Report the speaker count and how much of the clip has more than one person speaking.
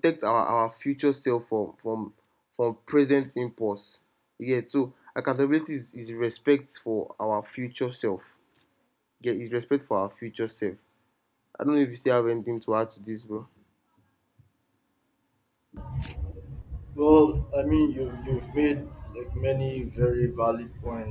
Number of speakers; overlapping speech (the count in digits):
2, no overlap